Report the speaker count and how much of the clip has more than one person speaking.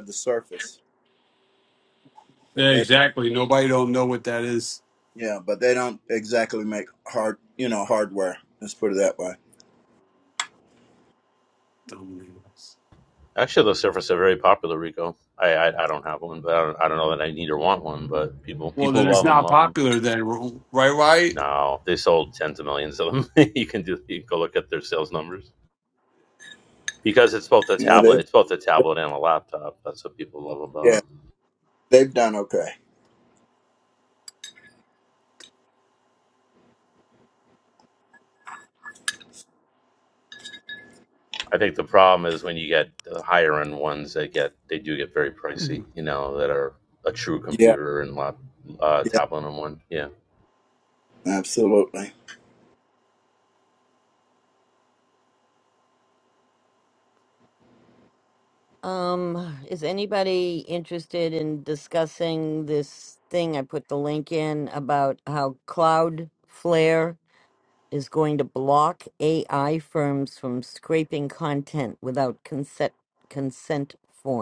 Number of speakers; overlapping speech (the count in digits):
4, about 3%